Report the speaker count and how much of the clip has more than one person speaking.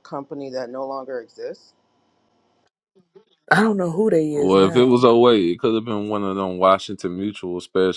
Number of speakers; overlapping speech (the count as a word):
three, about 8%